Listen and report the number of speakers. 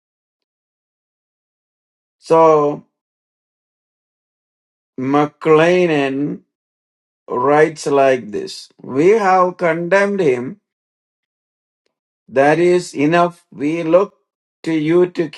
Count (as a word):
one